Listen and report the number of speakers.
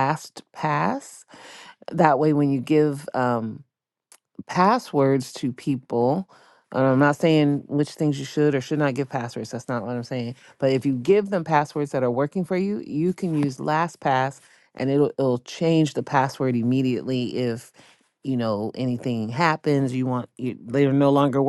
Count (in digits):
1